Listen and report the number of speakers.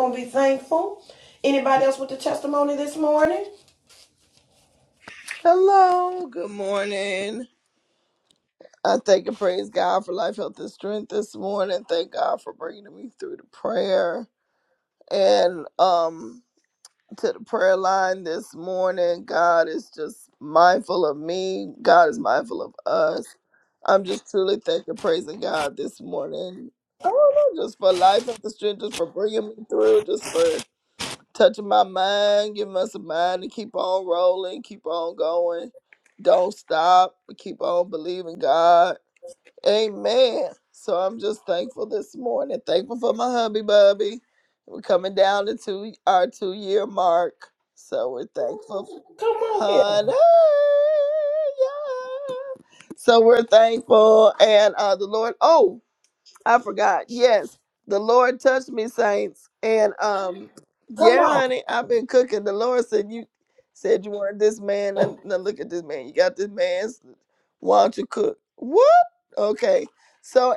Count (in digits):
2